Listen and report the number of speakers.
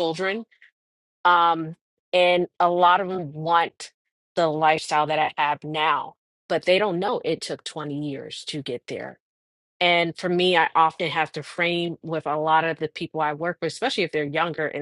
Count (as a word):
one